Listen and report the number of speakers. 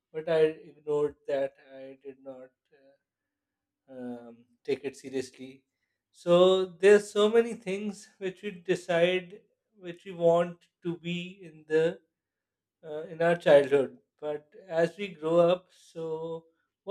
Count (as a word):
one